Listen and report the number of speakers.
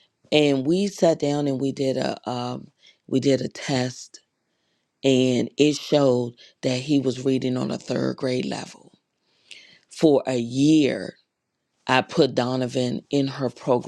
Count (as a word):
one